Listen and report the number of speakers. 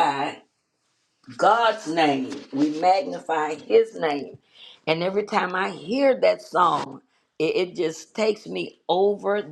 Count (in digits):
1